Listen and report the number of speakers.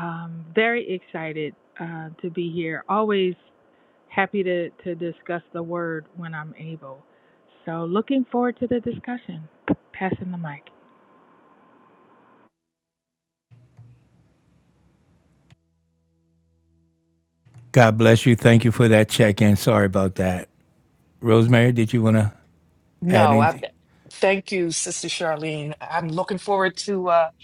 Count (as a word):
three